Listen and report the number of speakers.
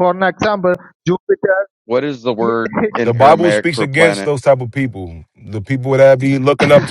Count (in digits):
3